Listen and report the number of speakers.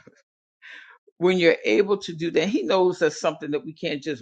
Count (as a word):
one